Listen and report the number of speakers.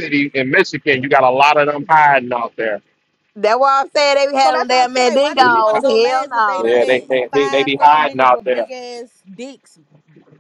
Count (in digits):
3